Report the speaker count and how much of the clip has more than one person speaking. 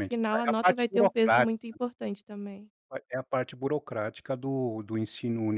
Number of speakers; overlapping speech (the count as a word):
two, about 27%